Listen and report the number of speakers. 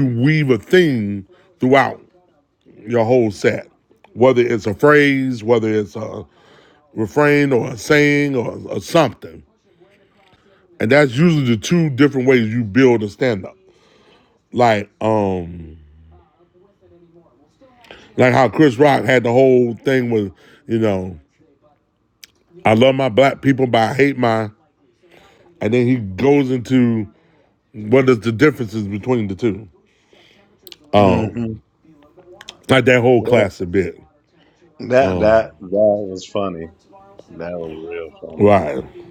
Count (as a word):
two